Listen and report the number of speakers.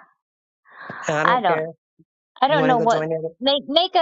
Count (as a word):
two